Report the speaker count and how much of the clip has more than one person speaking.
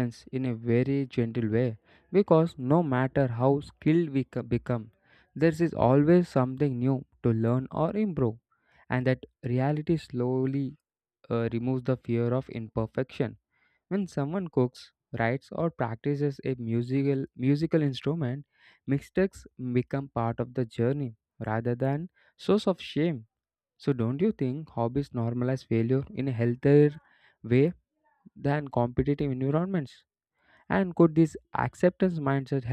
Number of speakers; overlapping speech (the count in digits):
1, no overlap